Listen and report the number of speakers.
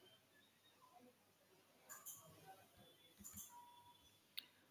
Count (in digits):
0